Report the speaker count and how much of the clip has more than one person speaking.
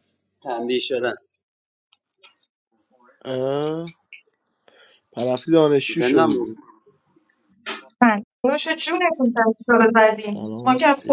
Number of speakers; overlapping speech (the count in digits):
3, about 10%